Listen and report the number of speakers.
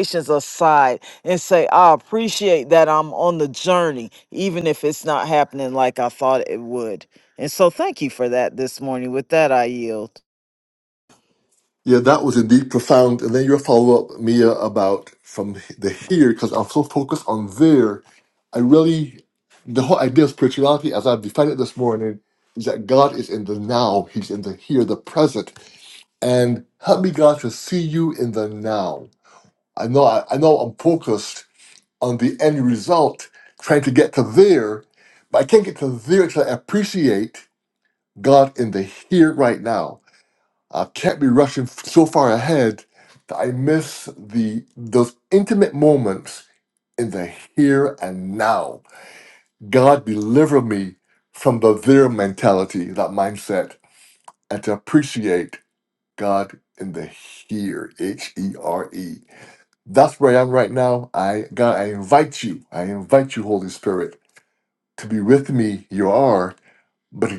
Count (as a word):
two